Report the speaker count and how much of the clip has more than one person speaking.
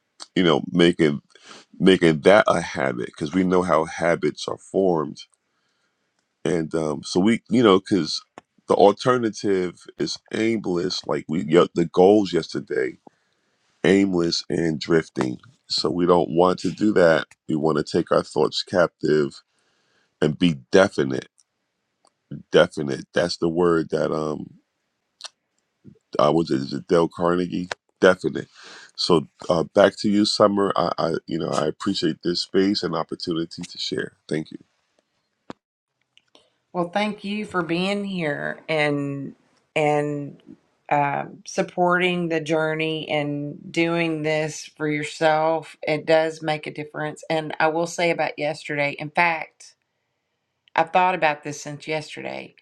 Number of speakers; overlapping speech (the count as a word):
two, no overlap